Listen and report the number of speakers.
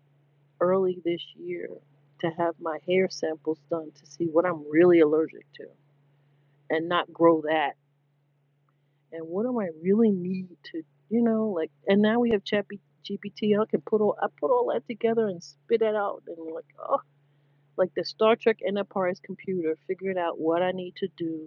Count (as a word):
one